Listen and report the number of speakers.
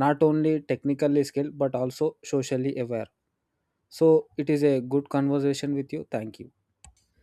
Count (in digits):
1